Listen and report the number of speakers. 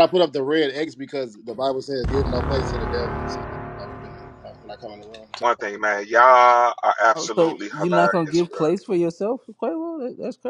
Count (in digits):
3